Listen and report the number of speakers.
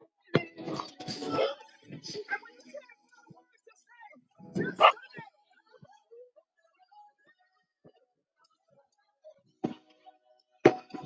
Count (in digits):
0